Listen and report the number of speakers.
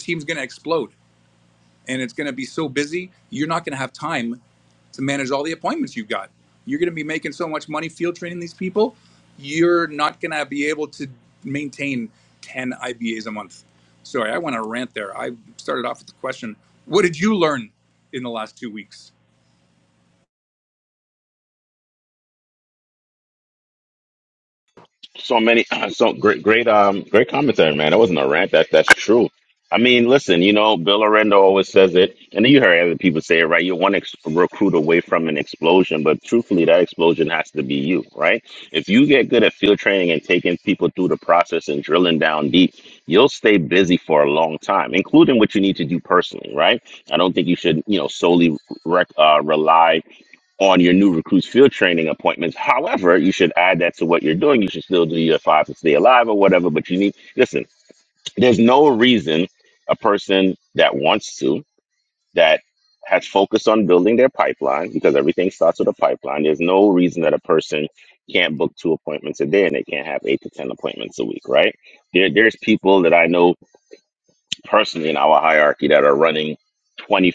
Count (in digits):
2